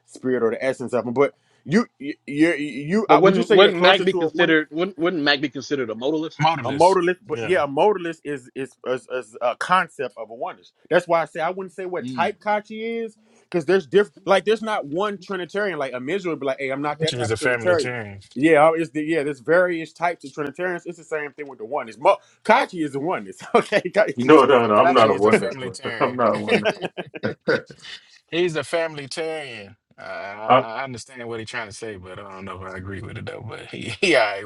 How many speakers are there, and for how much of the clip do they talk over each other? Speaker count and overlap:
4, about 15%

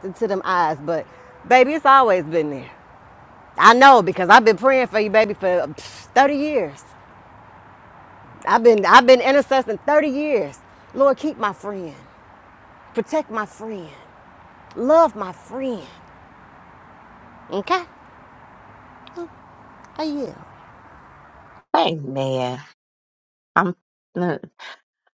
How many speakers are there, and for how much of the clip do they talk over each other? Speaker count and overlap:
2, no overlap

